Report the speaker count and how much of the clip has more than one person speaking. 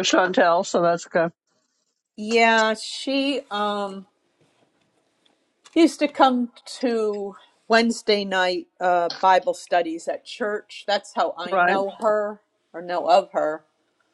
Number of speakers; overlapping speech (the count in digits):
2, about 2%